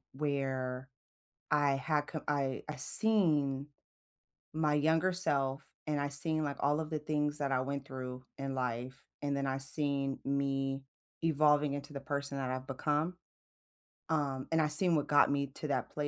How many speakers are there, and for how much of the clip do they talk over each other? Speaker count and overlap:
1, no overlap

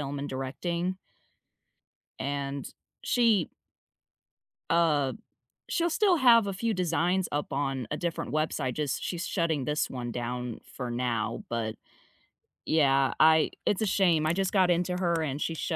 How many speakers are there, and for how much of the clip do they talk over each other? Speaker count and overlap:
1, no overlap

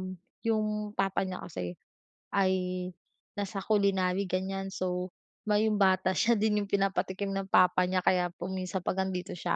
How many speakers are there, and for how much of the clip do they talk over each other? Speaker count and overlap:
1, no overlap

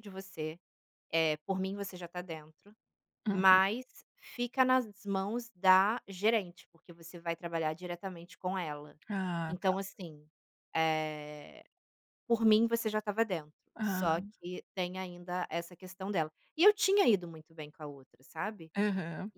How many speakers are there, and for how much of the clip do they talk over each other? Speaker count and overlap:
2, about 4%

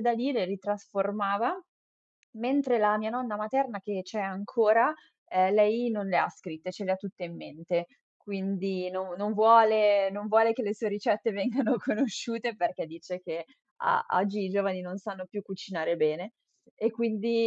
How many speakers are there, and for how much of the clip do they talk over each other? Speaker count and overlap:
1, no overlap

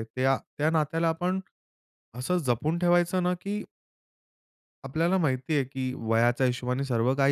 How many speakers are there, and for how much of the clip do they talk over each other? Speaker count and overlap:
1, no overlap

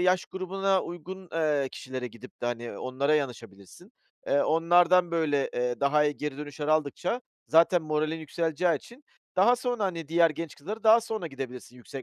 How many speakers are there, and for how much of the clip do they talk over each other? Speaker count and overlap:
1, no overlap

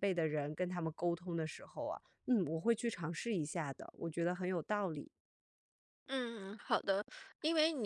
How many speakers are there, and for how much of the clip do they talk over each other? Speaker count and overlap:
2, no overlap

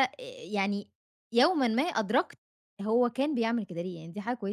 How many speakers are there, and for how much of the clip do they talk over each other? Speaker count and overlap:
1, no overlap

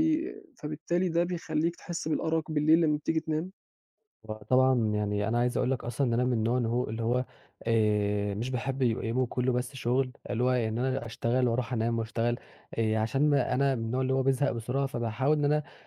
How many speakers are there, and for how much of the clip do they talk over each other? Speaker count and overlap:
2, no overlap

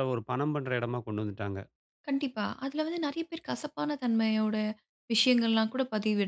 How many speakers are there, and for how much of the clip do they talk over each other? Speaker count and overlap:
2, no overlap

